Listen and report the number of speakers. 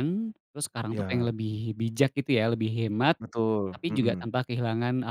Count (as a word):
two